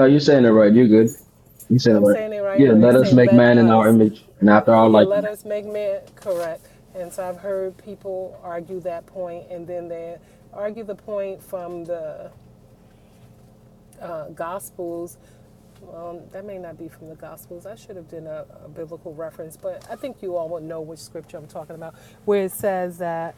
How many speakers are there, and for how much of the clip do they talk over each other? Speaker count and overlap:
2, about 9%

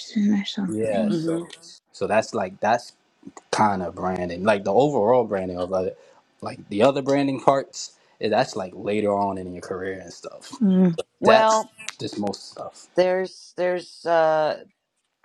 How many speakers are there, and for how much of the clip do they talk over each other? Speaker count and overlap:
3, about 8%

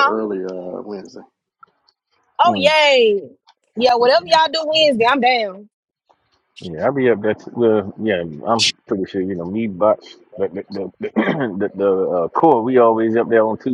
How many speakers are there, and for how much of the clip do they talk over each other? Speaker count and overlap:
3, about 3%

